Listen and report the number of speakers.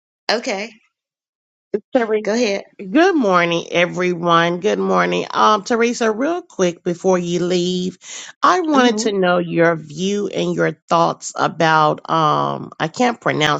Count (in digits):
2